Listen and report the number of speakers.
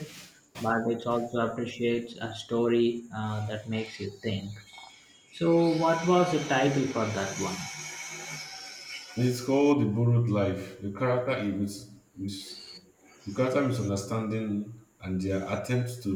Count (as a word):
two